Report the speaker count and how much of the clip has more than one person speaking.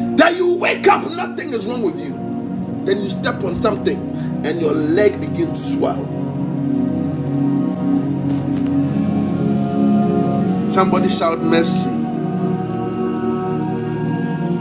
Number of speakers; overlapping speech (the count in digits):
1, no overlap